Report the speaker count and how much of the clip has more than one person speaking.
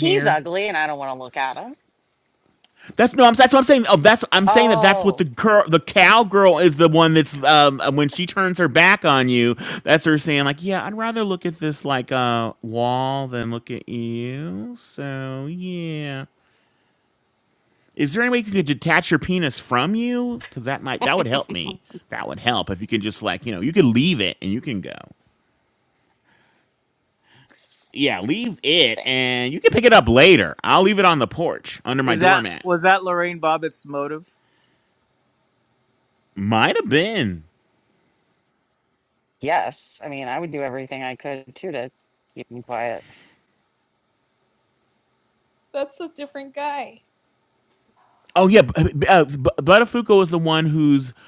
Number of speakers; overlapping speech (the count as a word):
four, about 4%